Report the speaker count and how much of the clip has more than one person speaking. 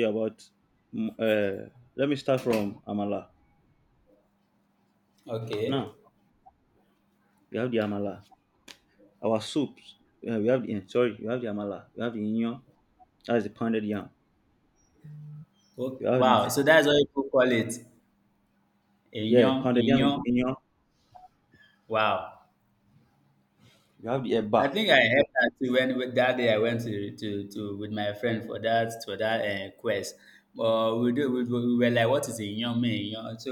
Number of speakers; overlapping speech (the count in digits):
2, about 5%